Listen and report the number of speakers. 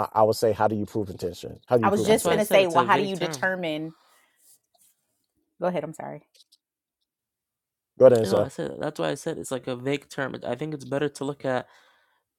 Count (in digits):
3